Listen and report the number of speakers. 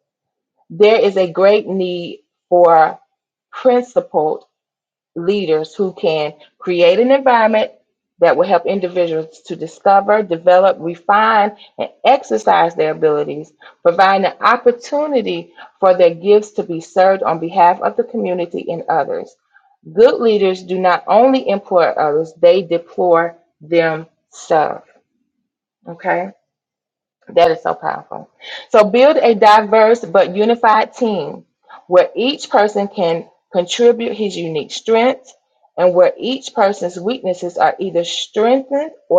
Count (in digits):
1